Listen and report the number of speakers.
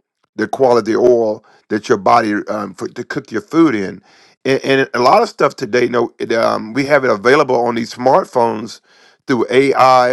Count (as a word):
one